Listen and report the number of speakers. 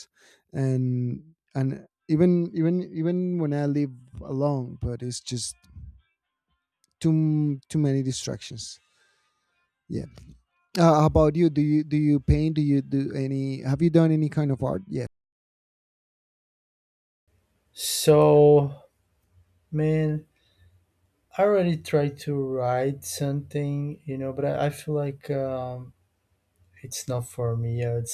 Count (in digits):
2